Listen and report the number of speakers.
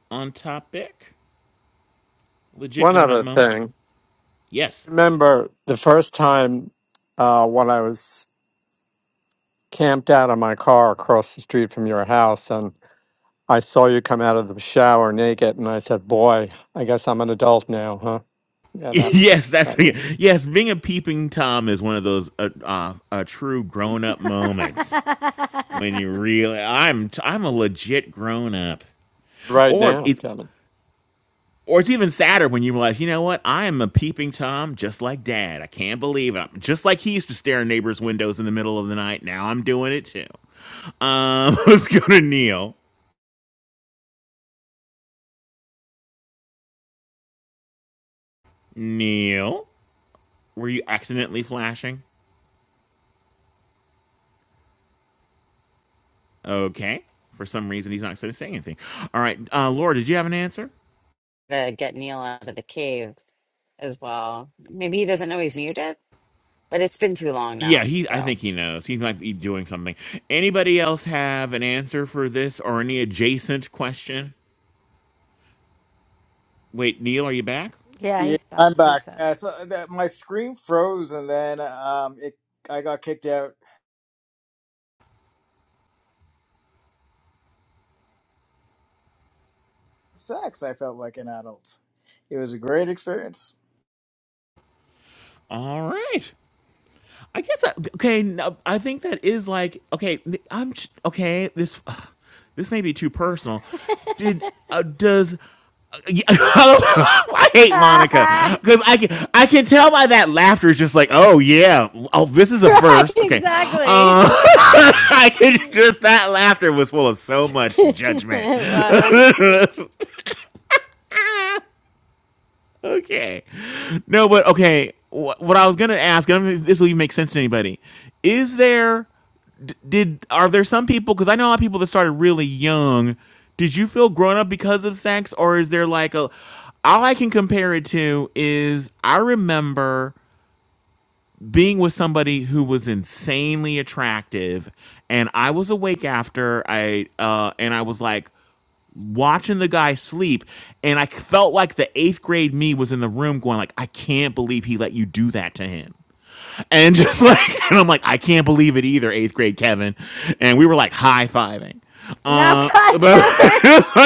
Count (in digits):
5